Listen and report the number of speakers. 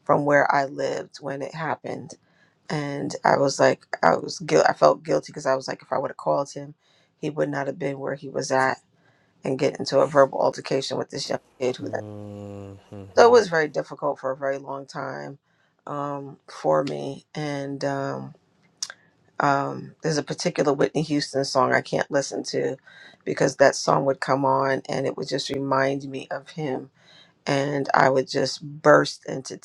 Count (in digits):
2